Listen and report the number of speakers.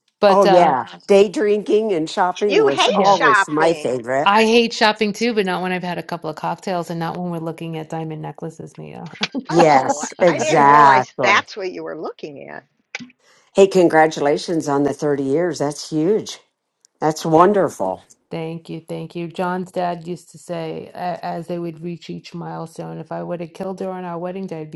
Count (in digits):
3